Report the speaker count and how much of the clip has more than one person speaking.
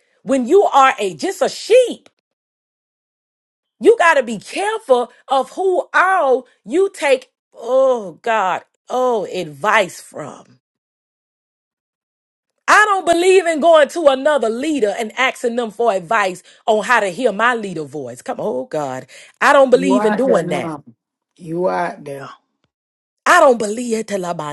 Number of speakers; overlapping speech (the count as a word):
two, about 4%